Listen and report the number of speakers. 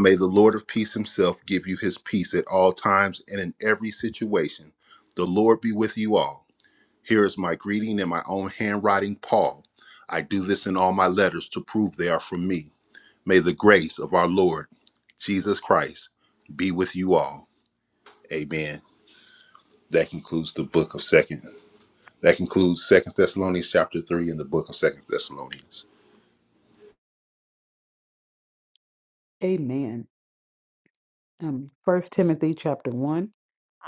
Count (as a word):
two